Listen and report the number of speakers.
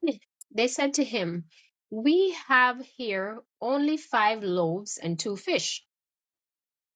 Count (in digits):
1